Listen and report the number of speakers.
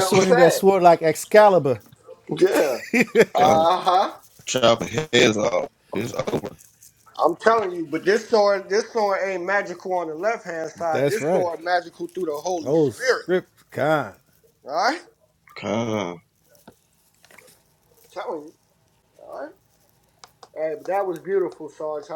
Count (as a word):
three